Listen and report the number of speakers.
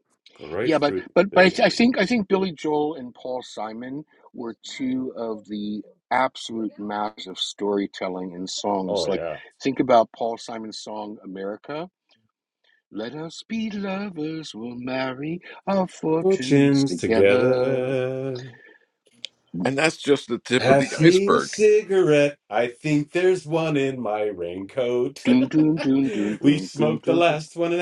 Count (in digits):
3